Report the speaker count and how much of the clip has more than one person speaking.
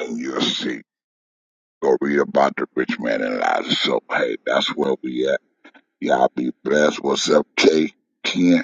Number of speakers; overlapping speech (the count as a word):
one, no overlap